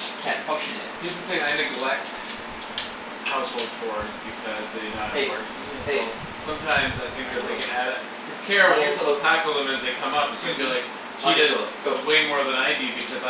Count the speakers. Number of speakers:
two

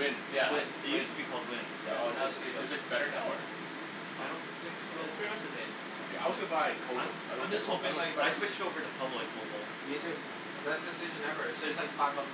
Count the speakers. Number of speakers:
four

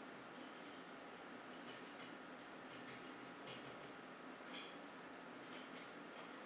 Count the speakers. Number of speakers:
zero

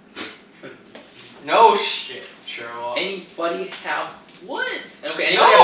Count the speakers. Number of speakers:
two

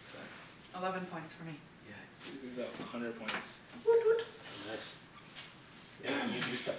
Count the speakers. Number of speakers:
three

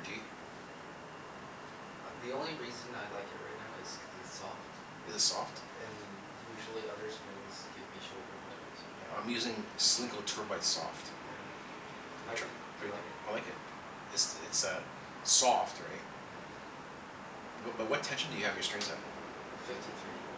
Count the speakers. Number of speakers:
two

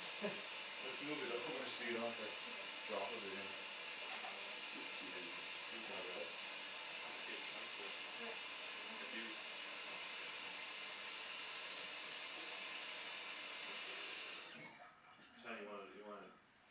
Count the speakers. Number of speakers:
three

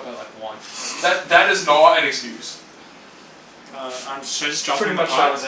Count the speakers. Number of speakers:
three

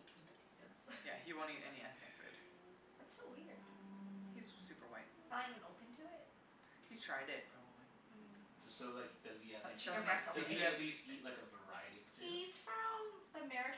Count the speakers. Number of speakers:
three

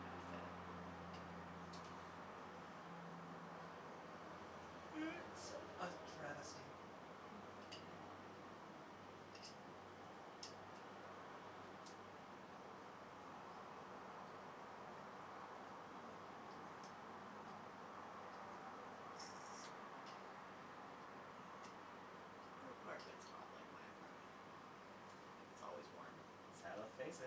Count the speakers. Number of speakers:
two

